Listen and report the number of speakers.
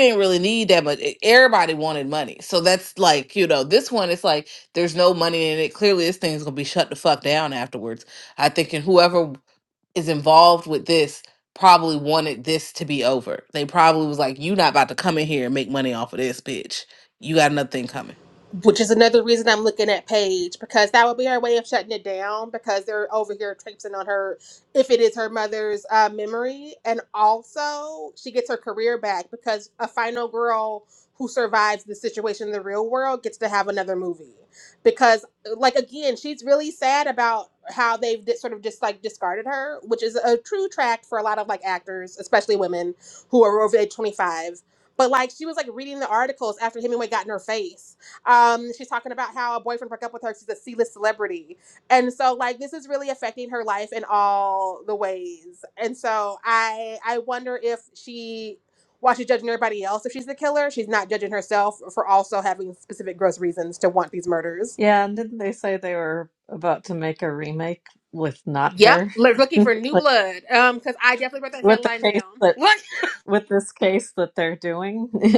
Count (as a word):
three